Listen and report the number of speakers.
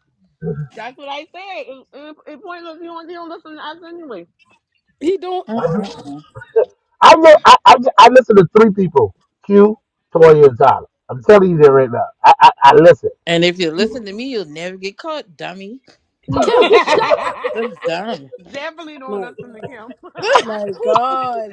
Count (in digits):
4